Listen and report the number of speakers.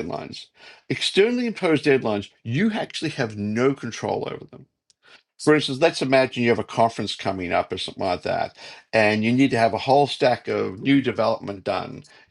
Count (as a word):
one